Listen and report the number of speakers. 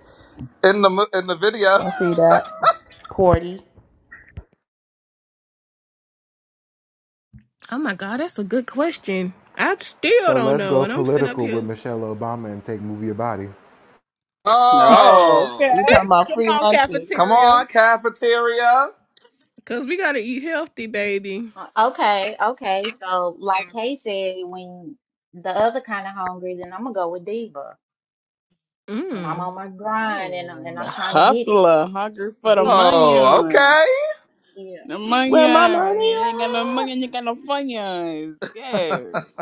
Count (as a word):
six